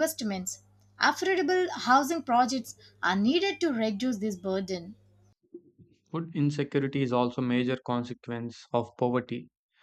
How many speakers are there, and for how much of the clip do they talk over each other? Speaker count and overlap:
2, no overlap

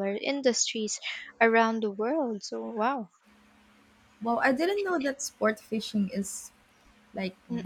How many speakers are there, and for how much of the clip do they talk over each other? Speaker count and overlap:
2, about 2%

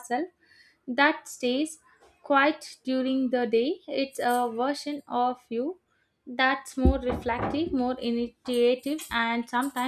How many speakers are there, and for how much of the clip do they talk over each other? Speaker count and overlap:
1, no overlap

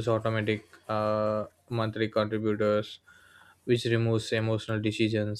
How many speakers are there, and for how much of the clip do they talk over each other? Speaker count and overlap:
1, no overlap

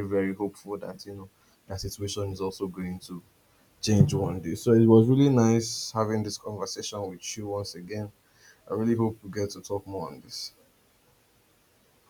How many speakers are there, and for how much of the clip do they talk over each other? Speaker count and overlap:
1, no overlap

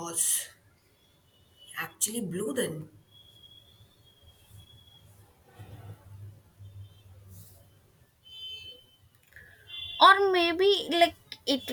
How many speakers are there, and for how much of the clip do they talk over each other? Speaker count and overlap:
2, no overlap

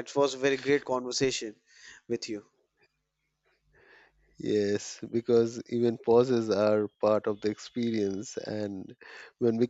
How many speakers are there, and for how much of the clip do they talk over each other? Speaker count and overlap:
2, no overlap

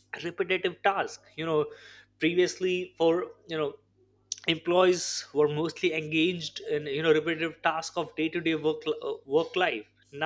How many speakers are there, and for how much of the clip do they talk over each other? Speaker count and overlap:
1, no overlap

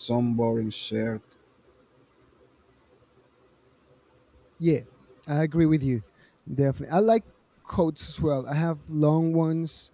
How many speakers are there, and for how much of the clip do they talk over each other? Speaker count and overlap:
2, no overlap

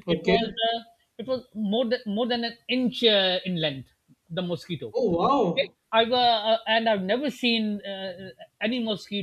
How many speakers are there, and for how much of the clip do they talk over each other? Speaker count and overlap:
2, about 5%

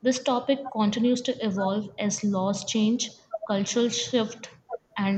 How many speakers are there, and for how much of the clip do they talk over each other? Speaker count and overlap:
1, no overlap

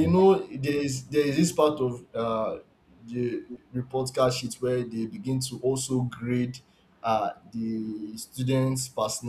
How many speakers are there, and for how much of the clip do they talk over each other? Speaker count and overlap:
1, no overlap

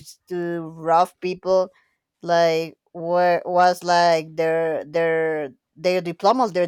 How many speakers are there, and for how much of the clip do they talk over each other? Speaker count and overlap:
1, no overlap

